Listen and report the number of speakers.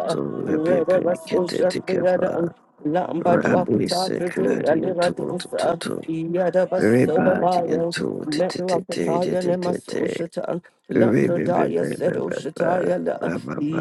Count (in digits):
2